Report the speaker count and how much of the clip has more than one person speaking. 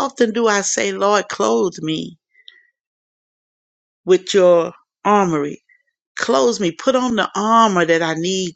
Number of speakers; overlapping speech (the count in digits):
1, no overlap